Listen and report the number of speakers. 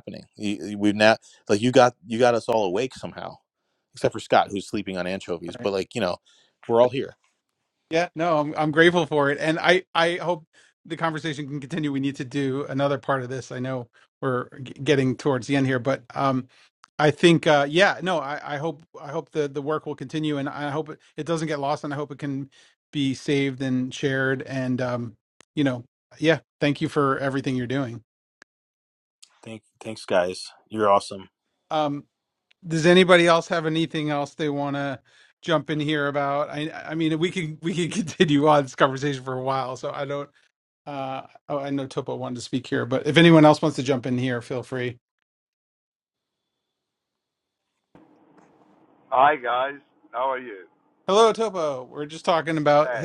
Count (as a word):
three